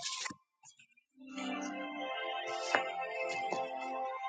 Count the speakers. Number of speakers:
0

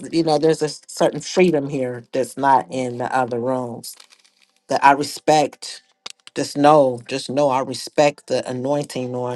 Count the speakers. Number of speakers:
1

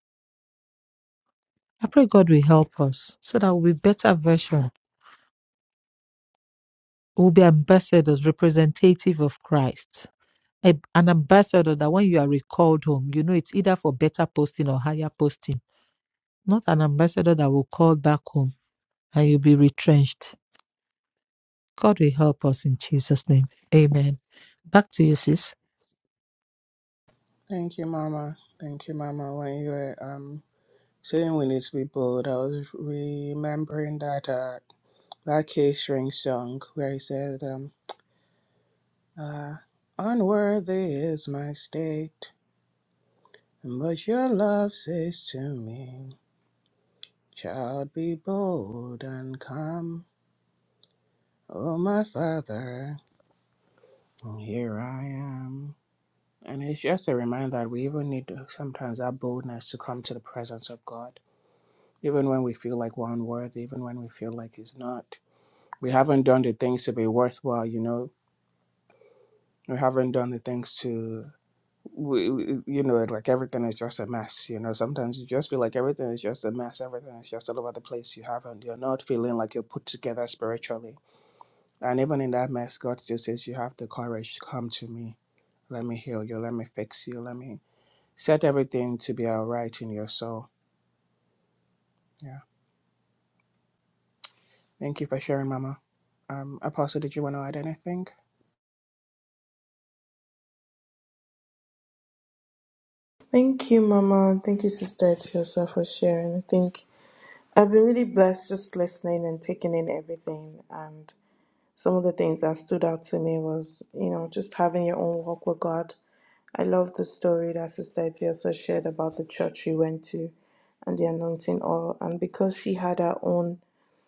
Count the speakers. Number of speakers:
3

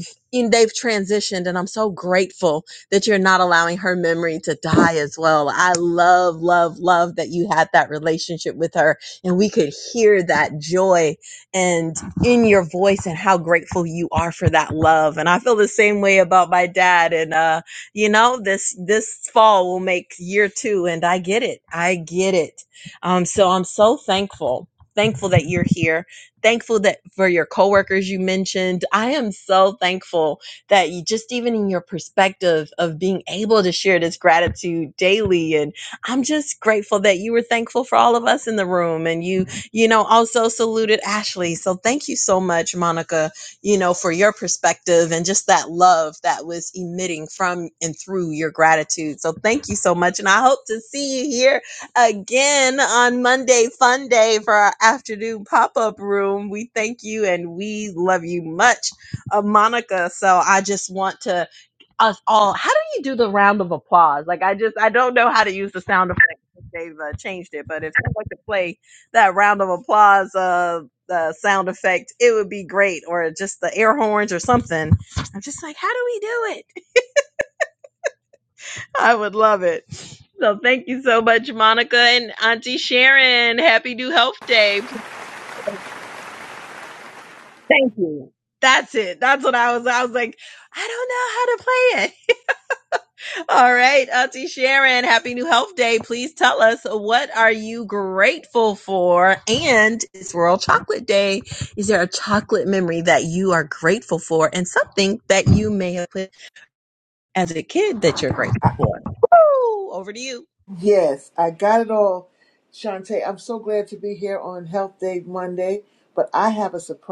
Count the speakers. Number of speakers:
2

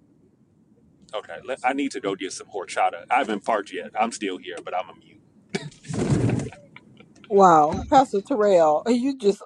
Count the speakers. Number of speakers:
2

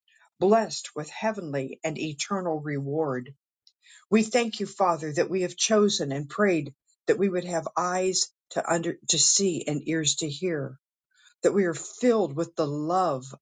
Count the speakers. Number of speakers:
1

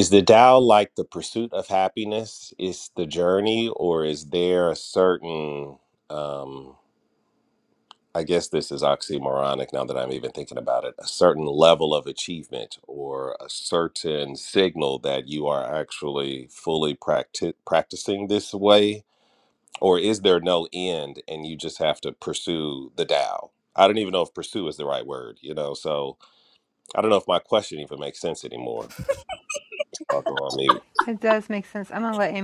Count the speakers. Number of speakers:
2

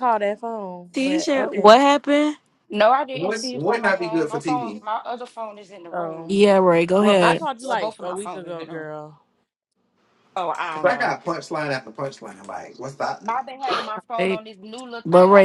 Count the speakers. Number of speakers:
4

